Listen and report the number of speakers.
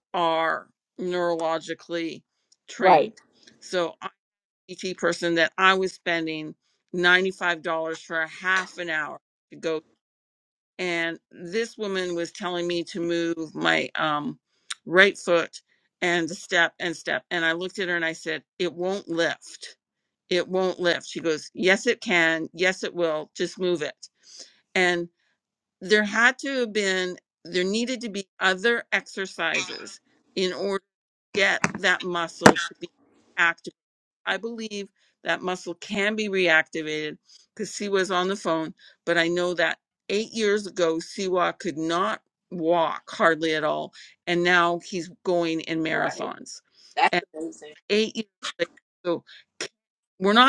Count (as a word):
two